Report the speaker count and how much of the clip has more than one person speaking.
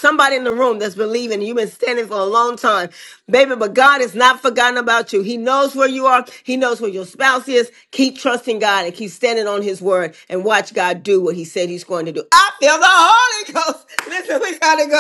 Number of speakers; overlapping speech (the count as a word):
one, no overlap